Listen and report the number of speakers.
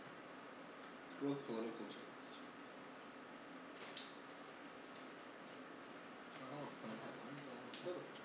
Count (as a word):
one